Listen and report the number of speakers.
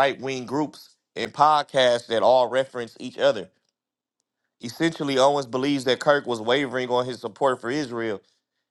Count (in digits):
1